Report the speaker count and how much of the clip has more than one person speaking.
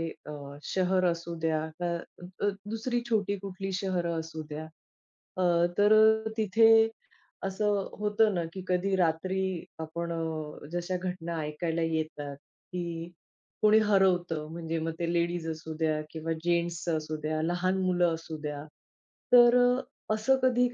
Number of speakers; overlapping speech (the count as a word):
one, no overlap